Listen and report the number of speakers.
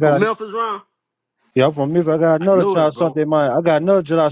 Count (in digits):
2